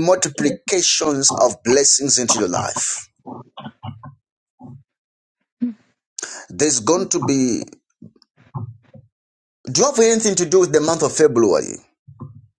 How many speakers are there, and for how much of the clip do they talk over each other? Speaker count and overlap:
1, no overlap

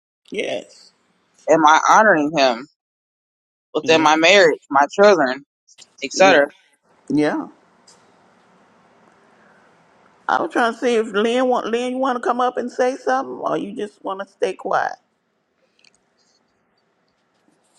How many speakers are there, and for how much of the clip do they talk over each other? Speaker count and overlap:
2, about 4%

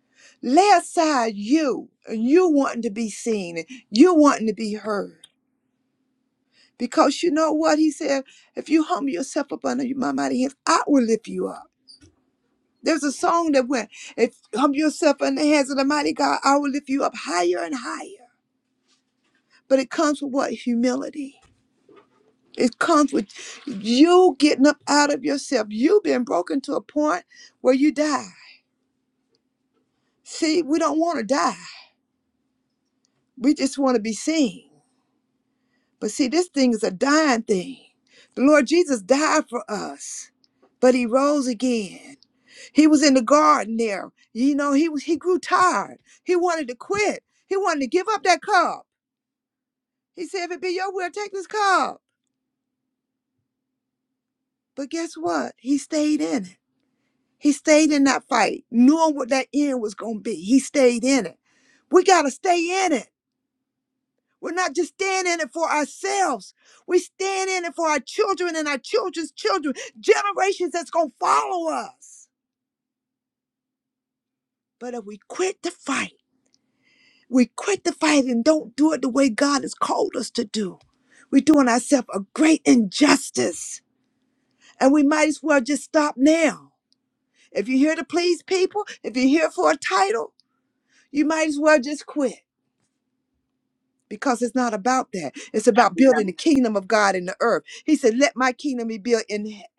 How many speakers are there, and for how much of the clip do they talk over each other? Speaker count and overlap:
1, no overlap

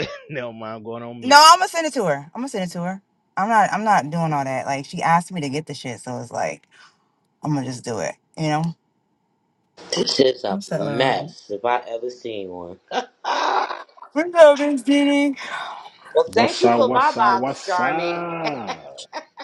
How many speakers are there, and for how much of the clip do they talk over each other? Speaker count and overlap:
4, about 14%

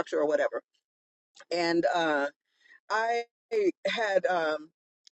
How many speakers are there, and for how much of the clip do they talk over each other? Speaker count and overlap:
1, no overlap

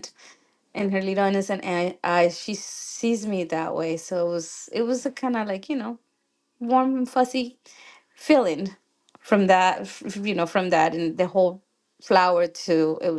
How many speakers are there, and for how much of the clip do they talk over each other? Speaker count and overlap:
1, no overlap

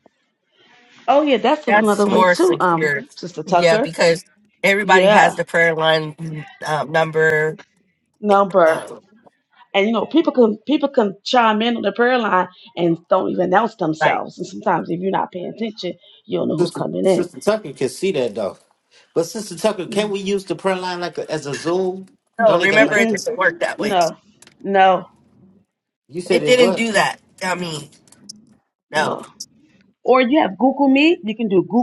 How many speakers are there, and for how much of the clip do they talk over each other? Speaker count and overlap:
3, about 15%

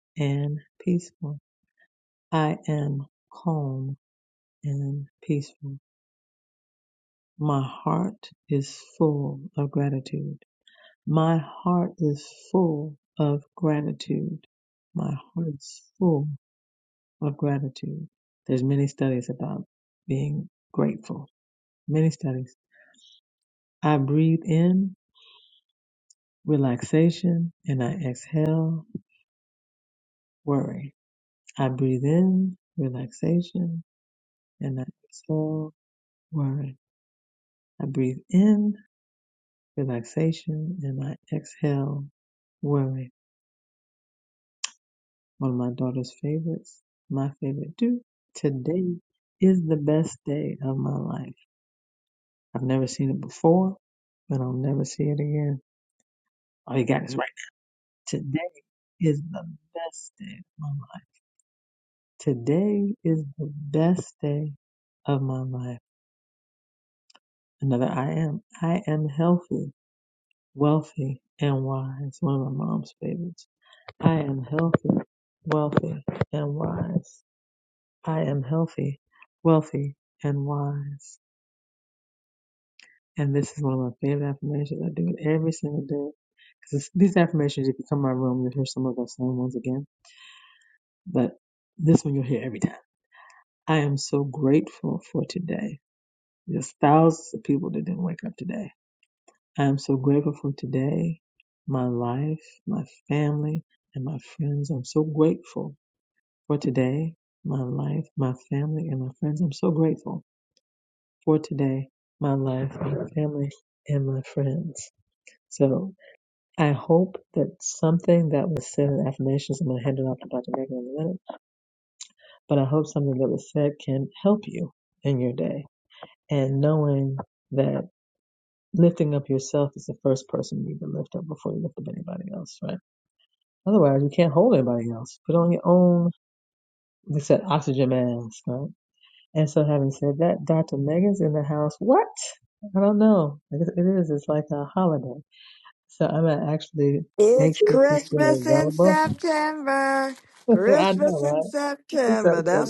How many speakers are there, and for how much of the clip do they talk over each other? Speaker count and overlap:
2, about 2%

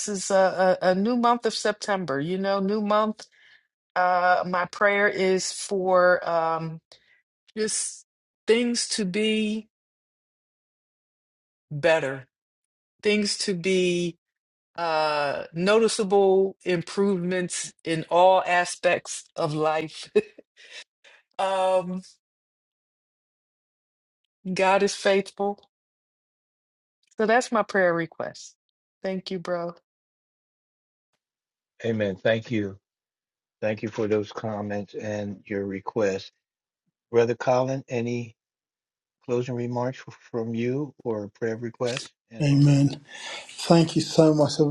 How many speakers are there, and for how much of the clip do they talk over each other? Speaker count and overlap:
3, about 1%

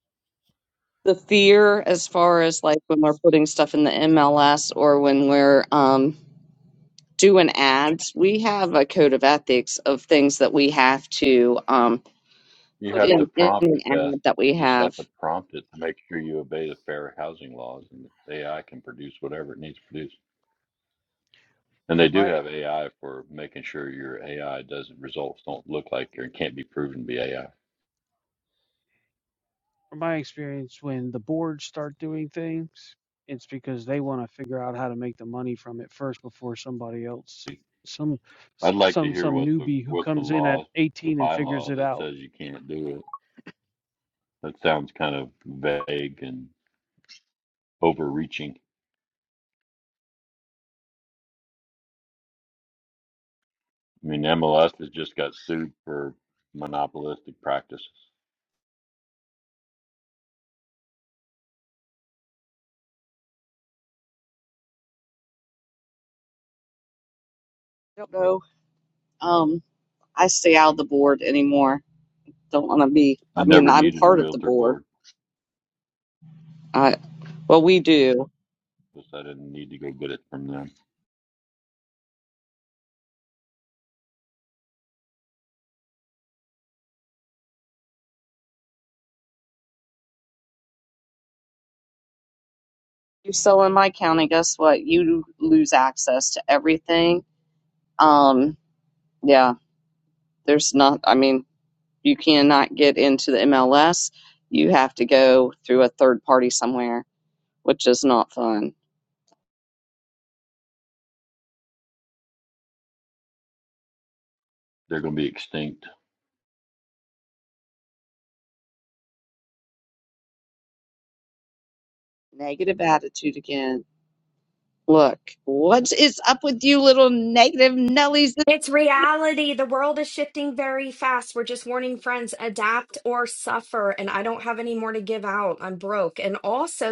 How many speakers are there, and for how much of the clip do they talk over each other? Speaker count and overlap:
4, about 5%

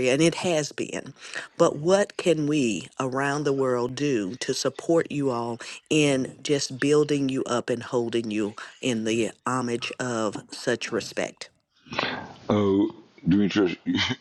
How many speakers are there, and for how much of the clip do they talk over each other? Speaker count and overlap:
2, no overlap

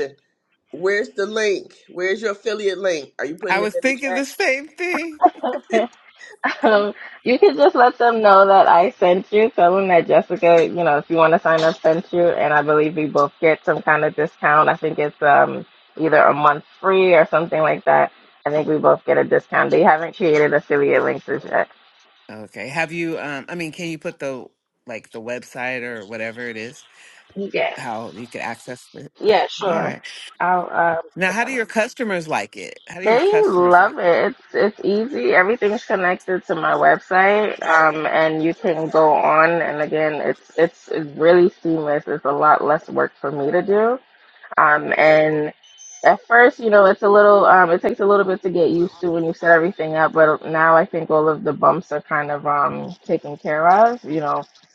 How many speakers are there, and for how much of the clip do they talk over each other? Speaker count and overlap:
3, about 5%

